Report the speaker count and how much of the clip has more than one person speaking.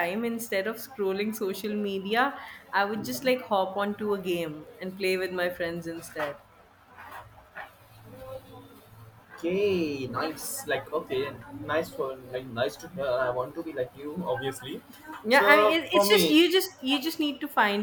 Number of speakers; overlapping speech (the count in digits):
2, about 5%